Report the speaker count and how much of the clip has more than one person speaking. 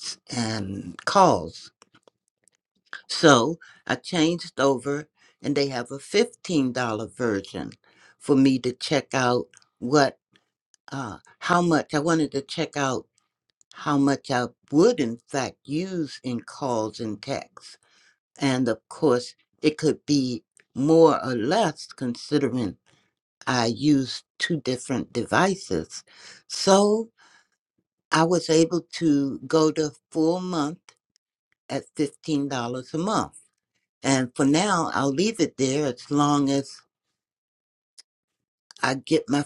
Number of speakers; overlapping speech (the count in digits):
1, no overlap